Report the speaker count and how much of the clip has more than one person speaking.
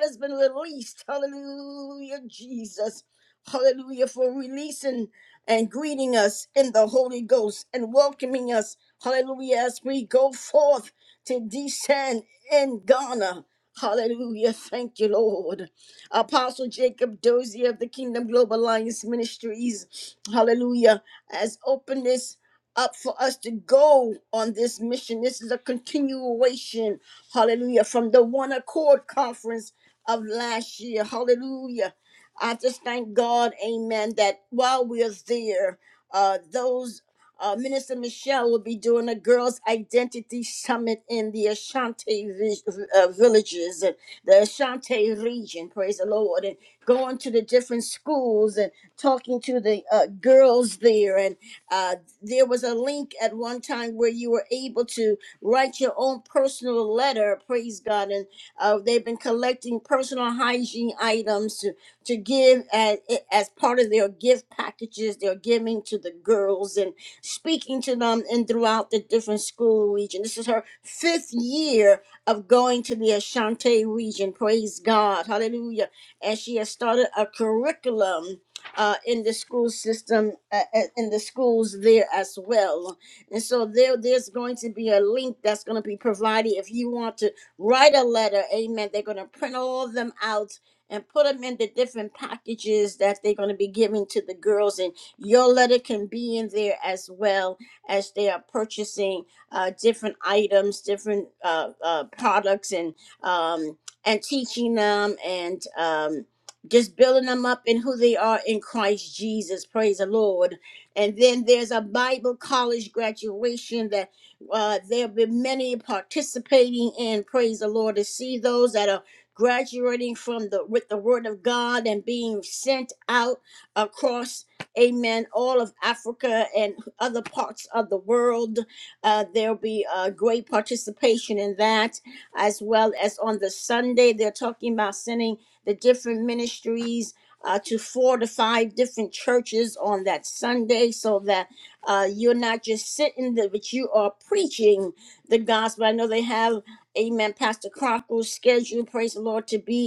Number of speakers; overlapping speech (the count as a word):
one, no overlap